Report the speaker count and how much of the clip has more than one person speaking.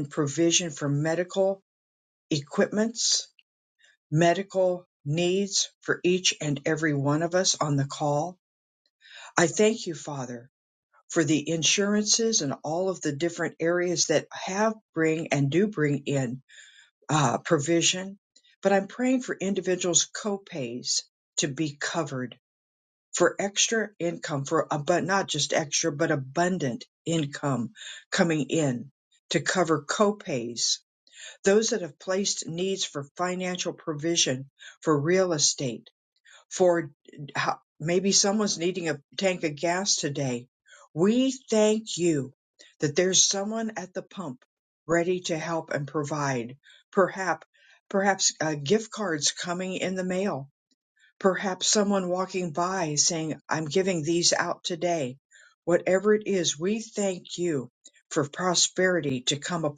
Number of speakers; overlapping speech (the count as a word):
one, no overlap